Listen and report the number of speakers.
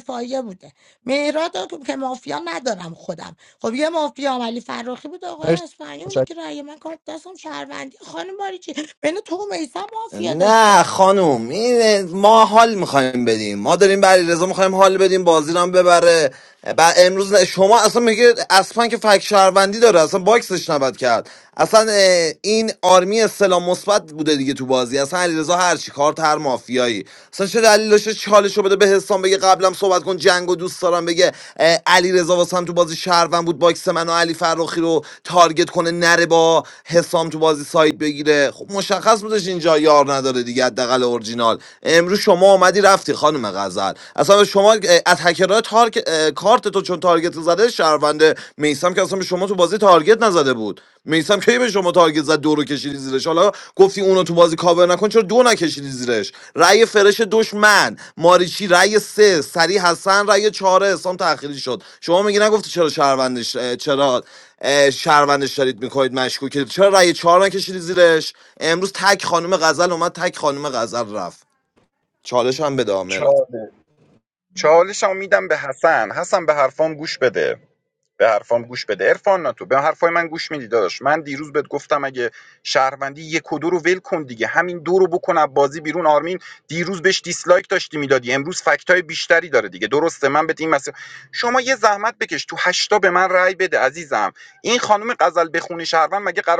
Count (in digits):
3